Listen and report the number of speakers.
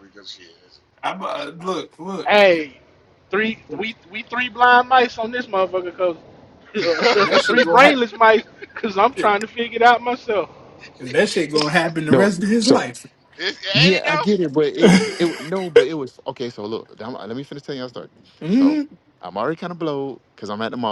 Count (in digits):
4